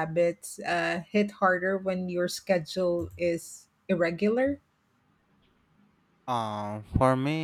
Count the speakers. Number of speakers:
two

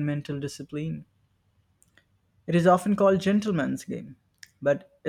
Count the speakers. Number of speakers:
one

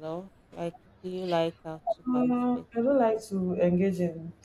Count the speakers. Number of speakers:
two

